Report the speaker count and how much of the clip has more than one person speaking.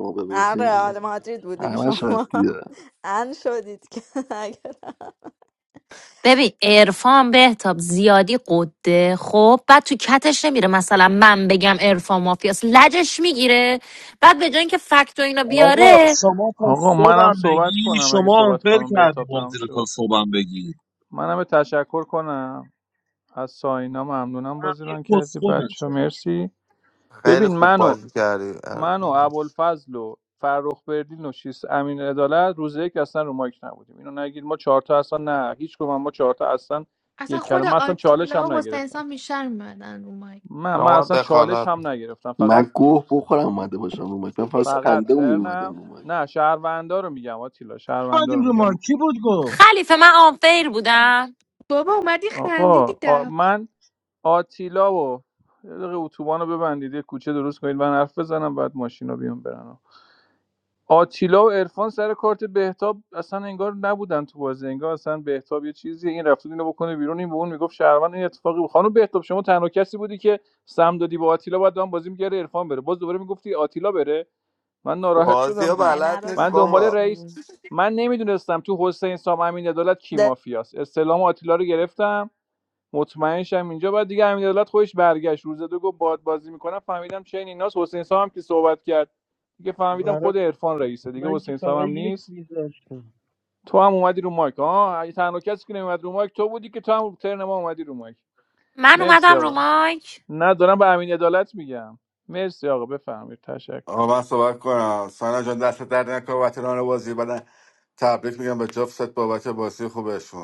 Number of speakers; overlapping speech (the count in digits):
10, about 15%